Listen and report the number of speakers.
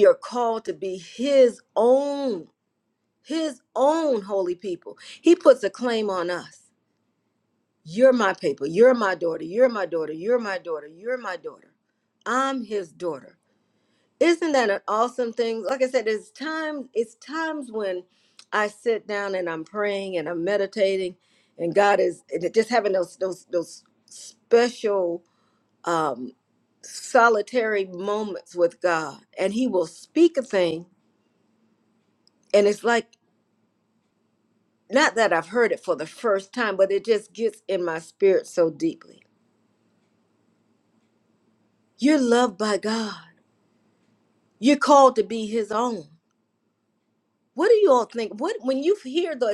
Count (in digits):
1